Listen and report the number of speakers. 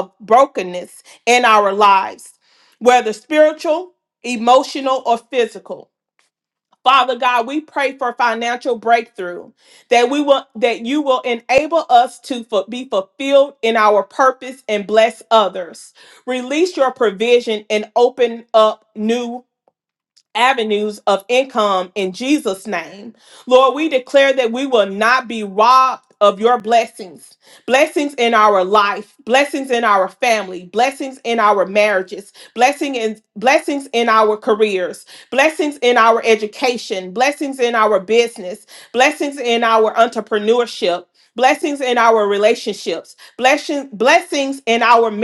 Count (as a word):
one